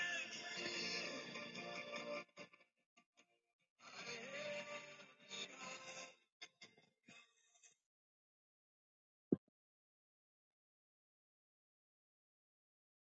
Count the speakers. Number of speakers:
0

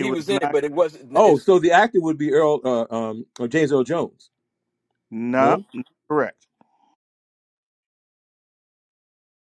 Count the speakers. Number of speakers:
3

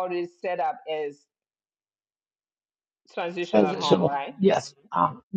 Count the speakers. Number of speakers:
2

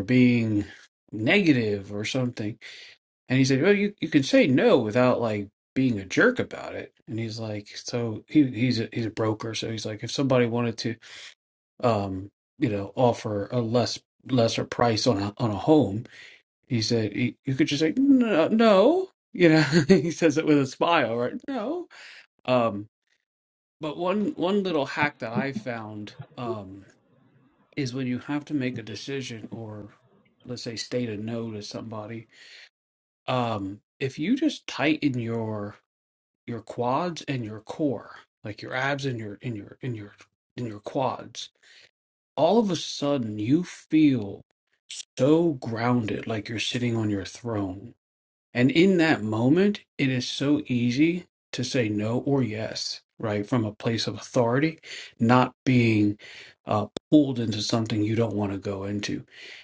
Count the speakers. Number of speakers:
1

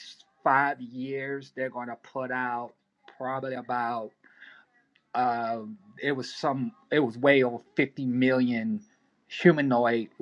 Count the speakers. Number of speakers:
1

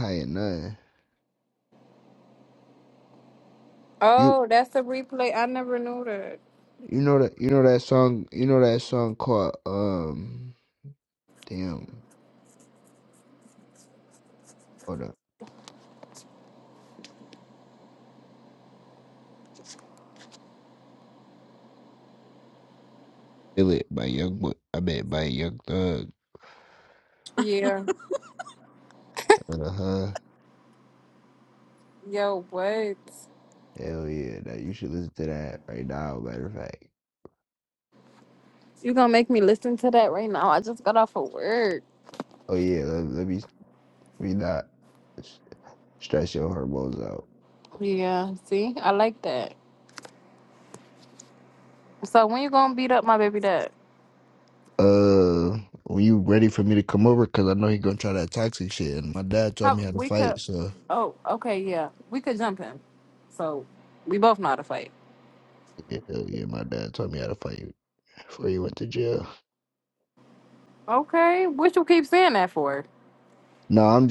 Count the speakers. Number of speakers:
2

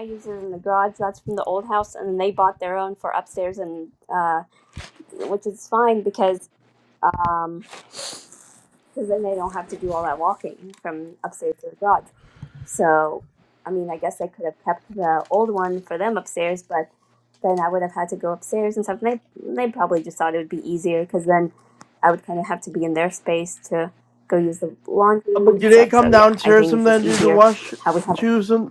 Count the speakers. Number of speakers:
2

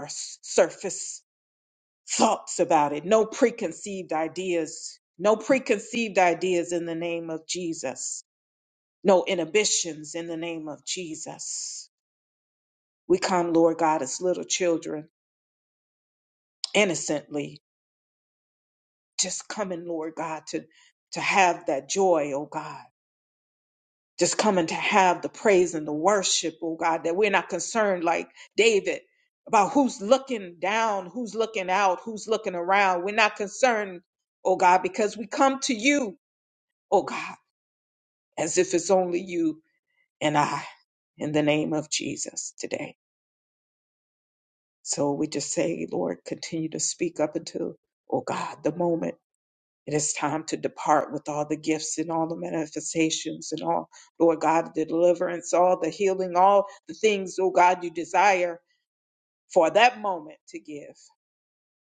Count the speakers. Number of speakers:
1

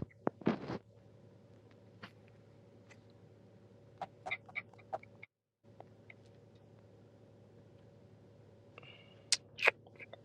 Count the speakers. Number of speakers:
0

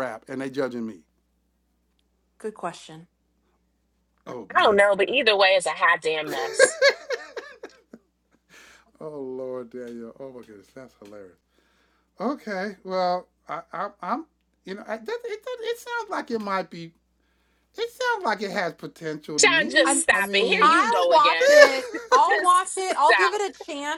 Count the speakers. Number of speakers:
3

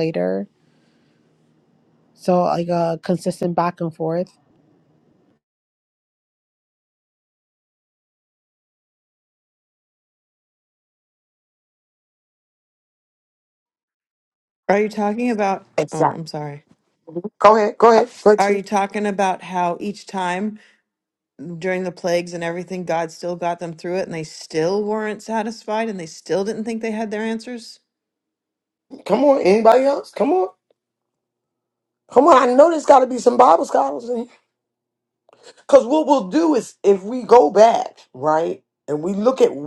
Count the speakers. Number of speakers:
3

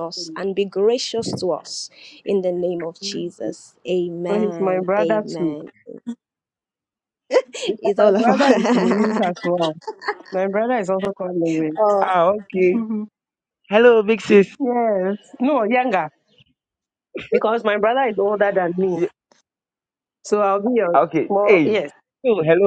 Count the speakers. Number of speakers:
3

